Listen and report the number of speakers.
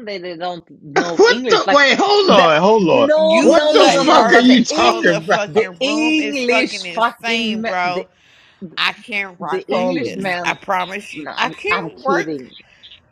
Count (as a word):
three